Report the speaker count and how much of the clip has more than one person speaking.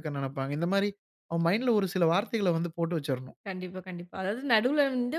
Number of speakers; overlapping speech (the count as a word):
two, no overlap